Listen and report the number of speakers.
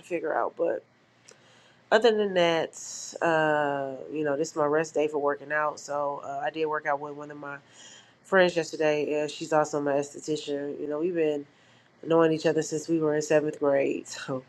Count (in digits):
1